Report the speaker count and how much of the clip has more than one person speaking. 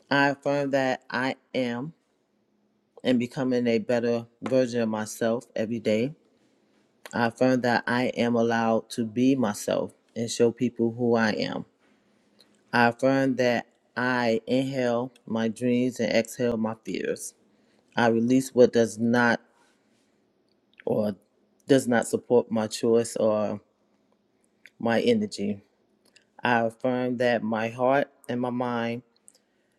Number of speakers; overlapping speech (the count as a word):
one, no overlap